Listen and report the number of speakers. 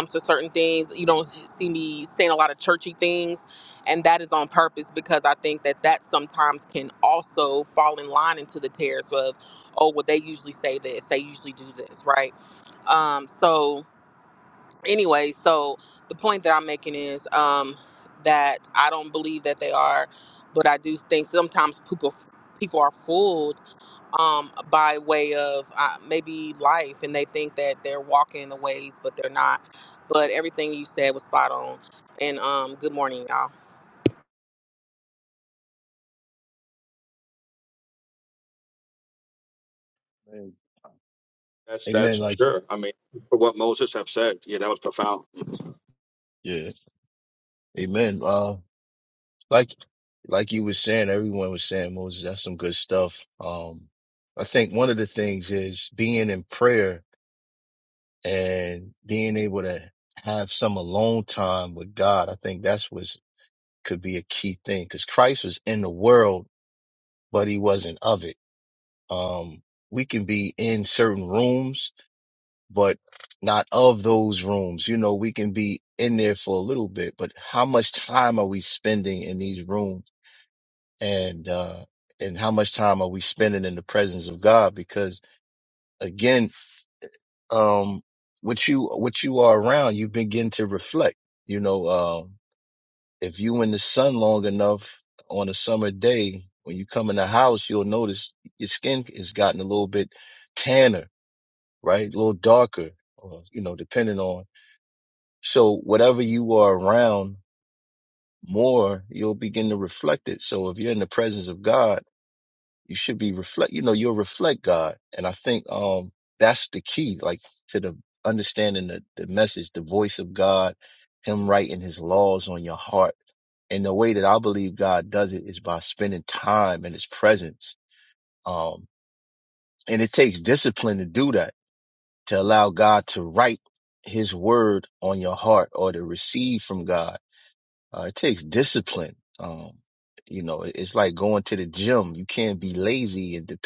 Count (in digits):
3